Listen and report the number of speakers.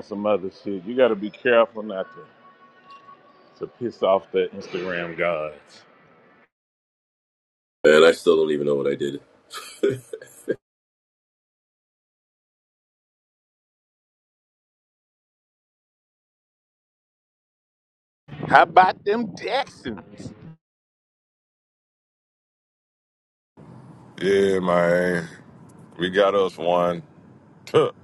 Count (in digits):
3